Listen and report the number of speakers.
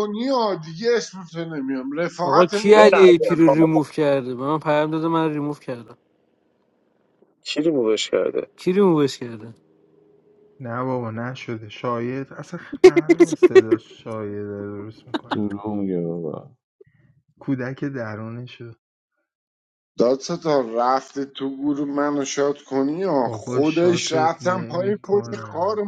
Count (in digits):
5